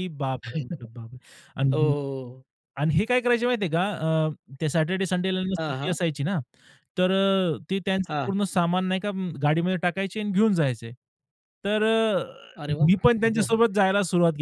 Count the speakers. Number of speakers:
2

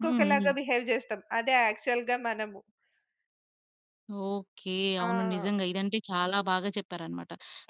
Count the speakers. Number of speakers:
2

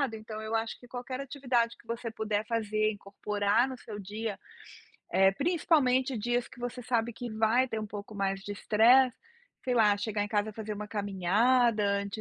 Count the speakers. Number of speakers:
1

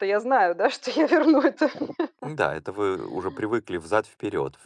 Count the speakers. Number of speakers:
2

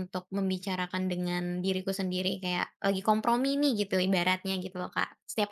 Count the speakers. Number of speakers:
1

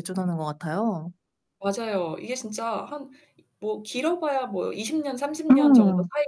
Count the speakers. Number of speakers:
2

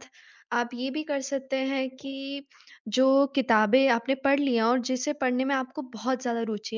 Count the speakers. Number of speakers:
1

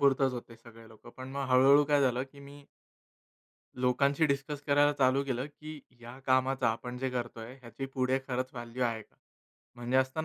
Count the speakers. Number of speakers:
1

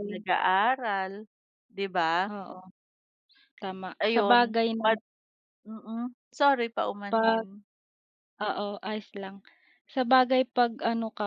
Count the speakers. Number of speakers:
2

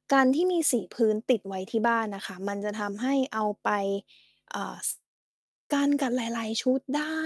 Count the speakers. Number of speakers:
1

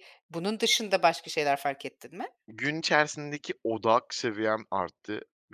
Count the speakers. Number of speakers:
2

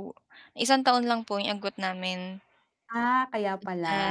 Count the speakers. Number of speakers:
2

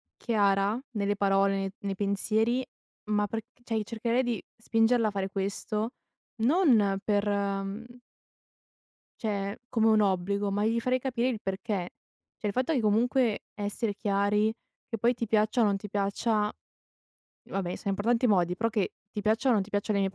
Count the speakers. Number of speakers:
1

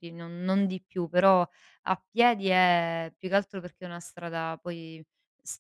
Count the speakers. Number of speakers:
1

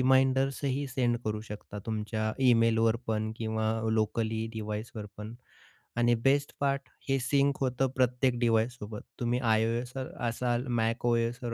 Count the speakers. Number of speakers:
1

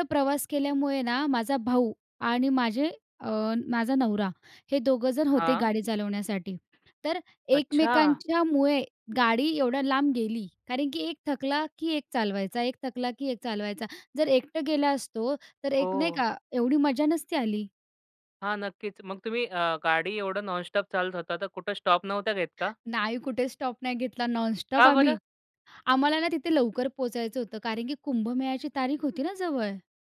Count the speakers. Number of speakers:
2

